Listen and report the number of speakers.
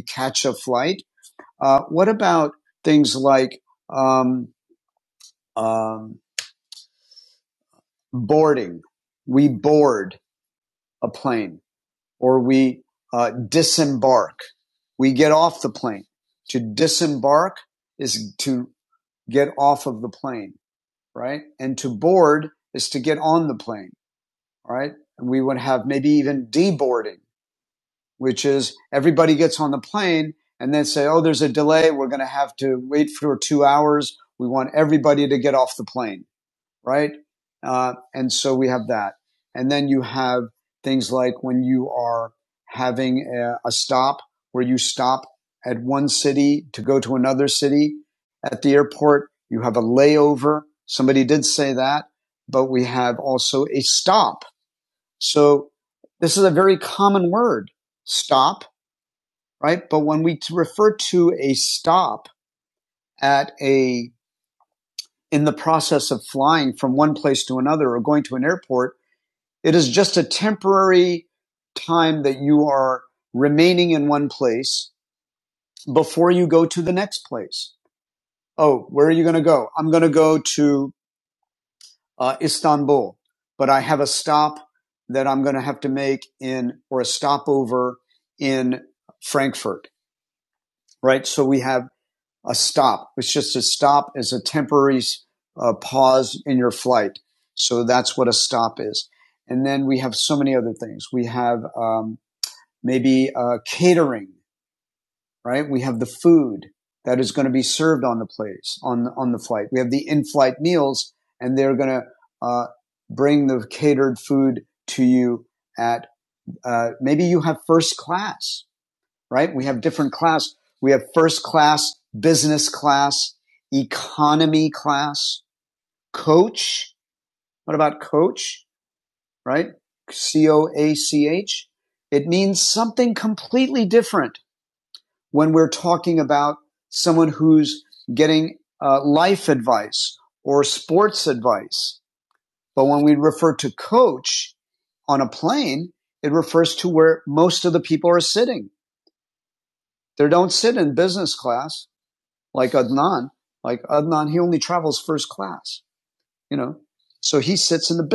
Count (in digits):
1